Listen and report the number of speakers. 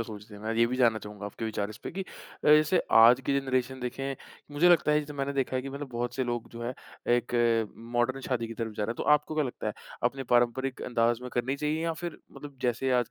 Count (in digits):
1